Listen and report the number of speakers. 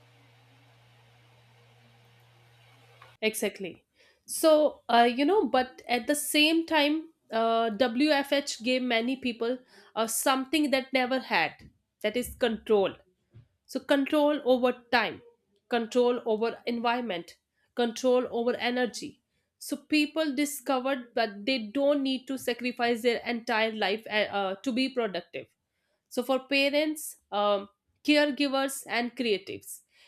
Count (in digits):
1